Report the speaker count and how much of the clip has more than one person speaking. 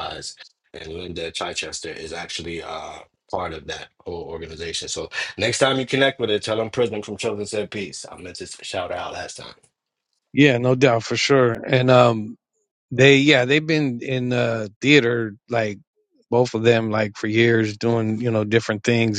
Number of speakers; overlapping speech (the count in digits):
2, no overlap